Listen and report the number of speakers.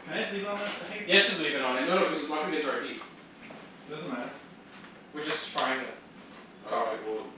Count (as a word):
three